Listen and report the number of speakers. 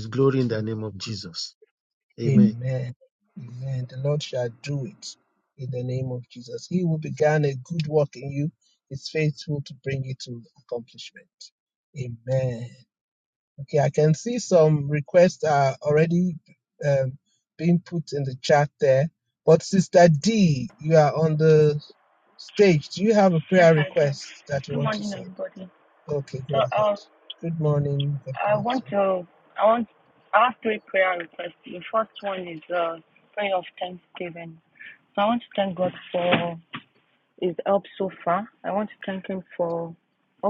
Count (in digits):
3